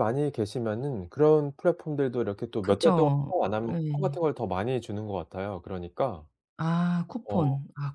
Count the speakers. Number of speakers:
two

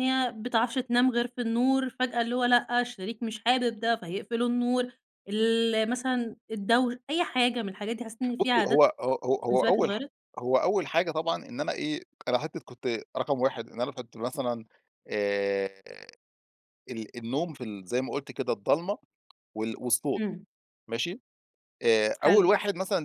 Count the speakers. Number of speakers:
two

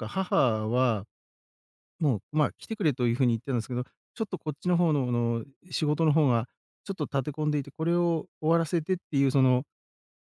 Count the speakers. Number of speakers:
one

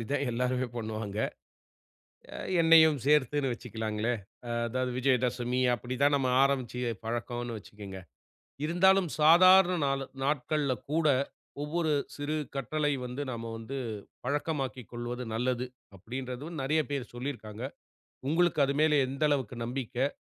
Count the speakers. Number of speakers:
one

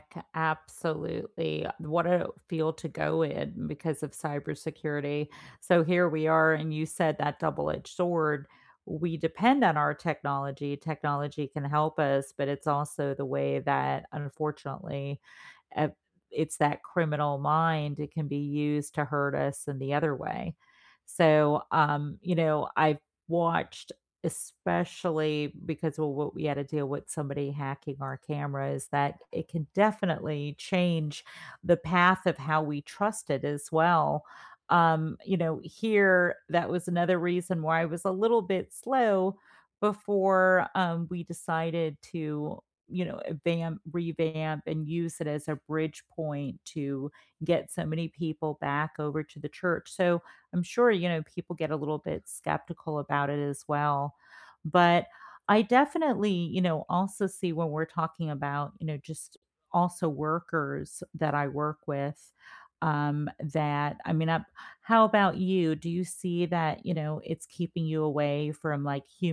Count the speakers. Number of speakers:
one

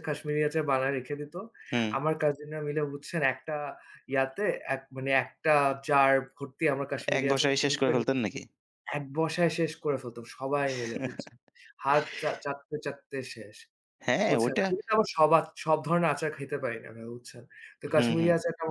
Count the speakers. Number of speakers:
two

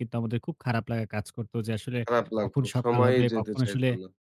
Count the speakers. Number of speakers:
two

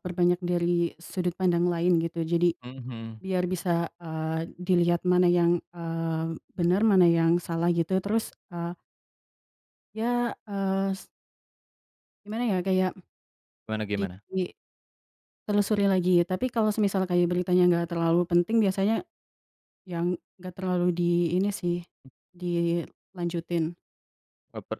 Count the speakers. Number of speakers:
two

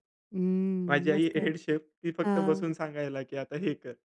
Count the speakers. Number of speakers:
two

